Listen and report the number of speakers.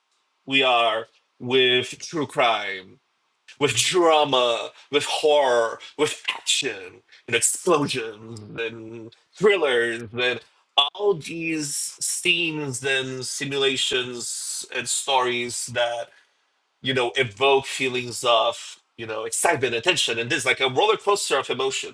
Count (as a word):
one